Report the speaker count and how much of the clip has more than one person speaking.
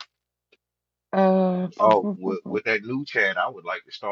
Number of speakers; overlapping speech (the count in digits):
2, about 19%